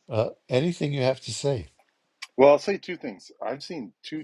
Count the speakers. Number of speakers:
2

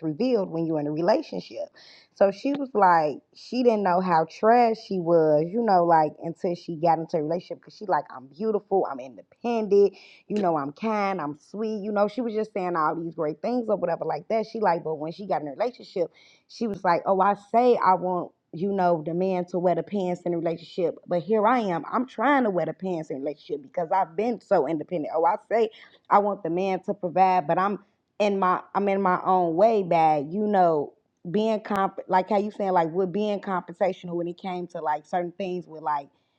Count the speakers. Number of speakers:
1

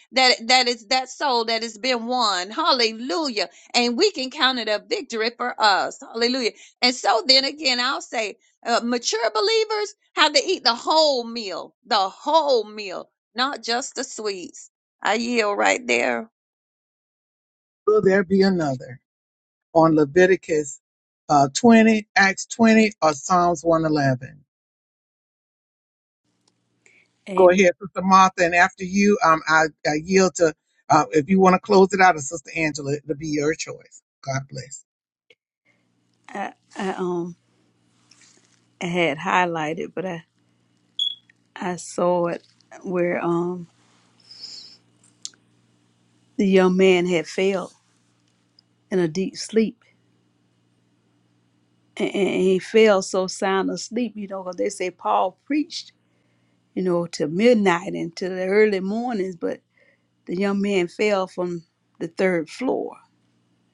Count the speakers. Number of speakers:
3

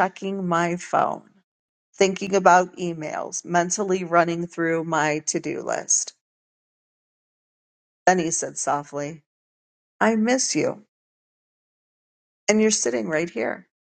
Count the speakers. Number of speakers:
1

